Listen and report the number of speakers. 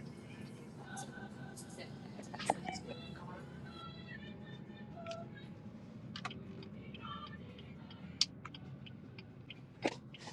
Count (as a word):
zero